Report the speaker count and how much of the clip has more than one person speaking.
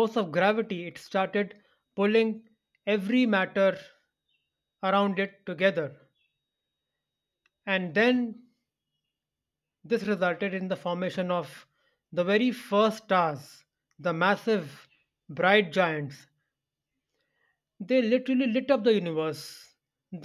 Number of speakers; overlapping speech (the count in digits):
1, no overlap